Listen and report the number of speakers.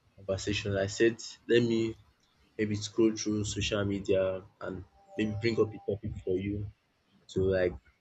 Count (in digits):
1